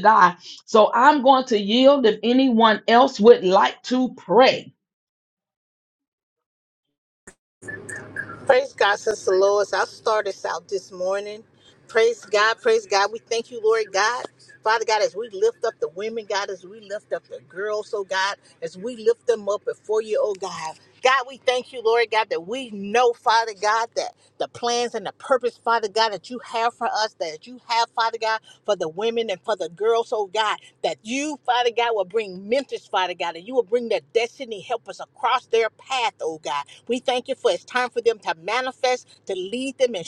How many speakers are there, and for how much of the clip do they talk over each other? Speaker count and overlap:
2, no overlap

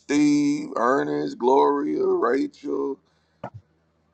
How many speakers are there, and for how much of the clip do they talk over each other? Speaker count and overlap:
1, no overlap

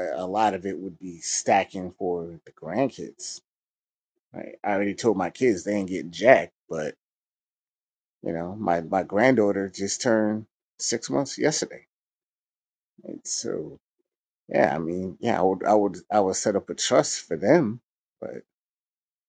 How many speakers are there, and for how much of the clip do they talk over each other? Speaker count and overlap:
1, no overlap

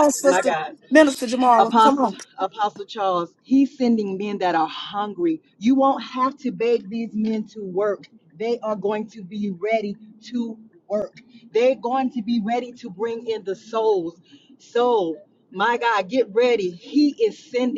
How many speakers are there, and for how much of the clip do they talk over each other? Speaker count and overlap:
2, about 7%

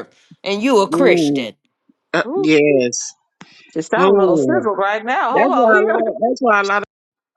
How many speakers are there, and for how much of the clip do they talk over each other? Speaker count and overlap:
3, about 30%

